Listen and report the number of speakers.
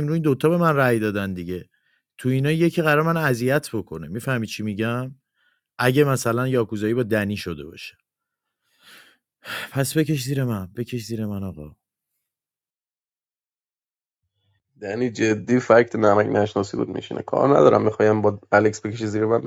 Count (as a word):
two